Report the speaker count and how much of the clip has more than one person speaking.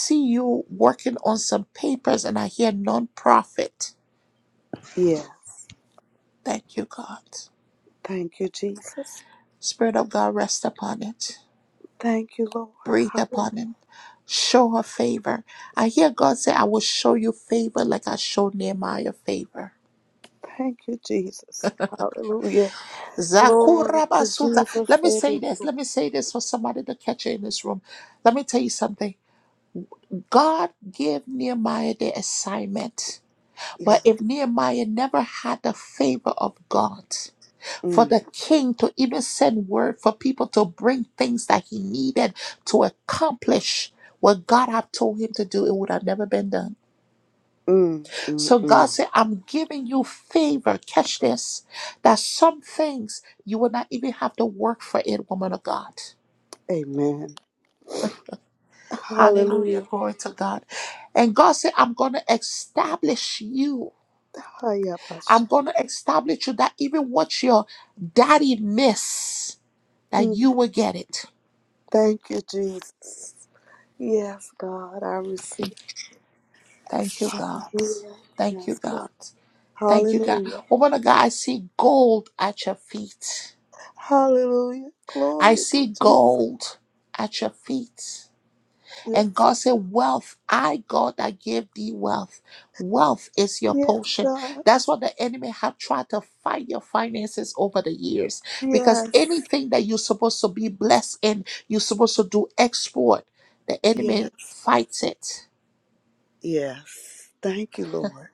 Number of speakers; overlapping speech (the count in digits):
2, about 8%